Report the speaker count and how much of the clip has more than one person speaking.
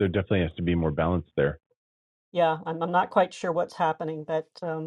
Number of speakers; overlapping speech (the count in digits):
2, no overlap